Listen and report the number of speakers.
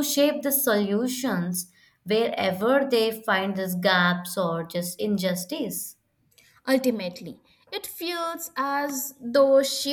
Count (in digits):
2